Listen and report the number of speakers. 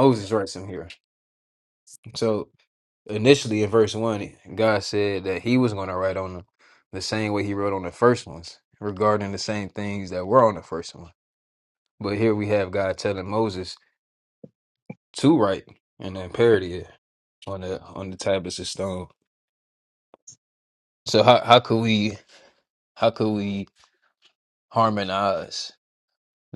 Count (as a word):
one